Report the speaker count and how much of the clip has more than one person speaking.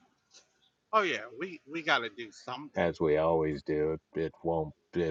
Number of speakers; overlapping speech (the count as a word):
two, about 2%